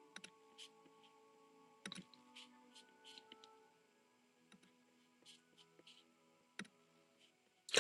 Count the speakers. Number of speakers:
0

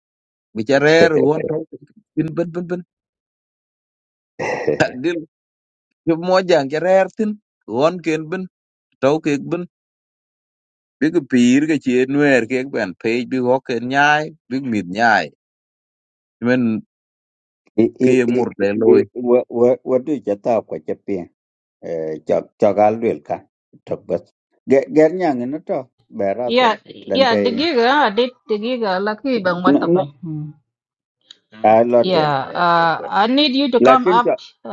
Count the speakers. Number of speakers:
3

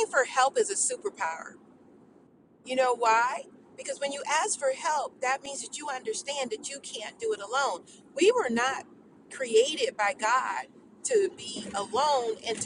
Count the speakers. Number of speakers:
1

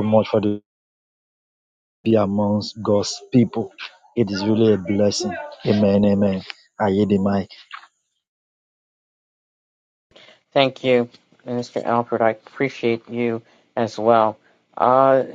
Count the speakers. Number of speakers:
2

